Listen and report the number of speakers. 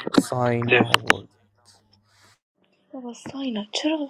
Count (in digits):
2